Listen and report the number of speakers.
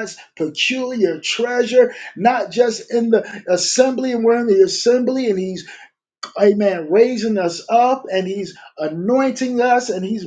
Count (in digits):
1